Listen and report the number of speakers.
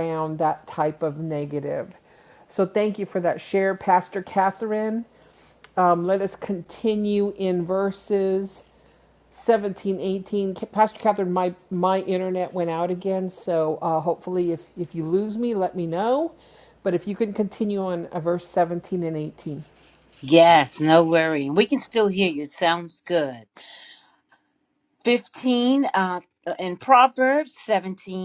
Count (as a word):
two